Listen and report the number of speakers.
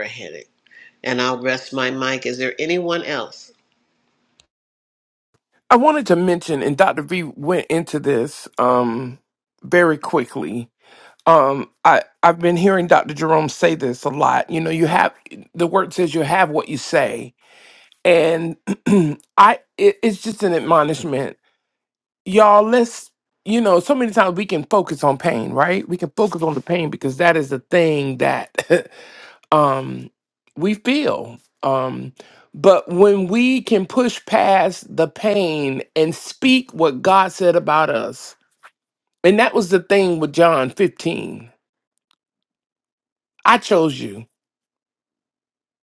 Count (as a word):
two